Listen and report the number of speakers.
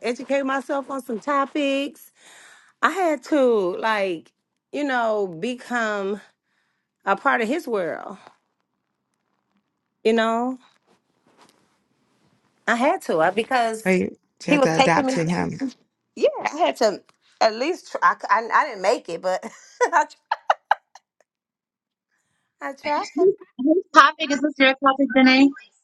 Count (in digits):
3